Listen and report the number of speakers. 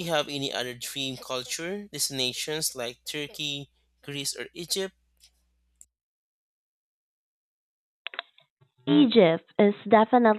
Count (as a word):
two